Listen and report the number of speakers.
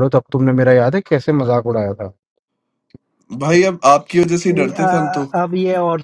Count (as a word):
three